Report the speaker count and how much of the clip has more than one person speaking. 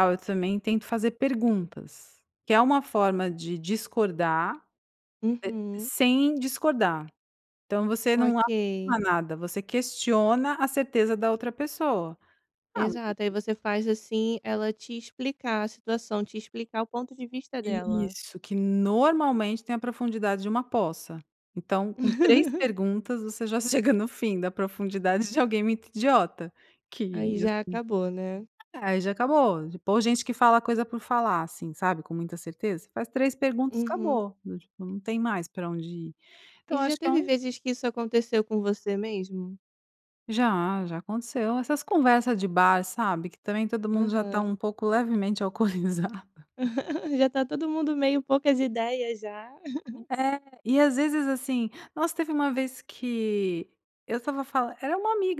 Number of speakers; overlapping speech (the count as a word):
two, about 6%